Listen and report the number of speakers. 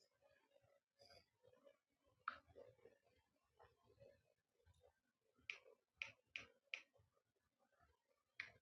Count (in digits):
0